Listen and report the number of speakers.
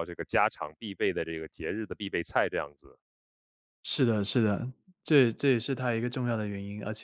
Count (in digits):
2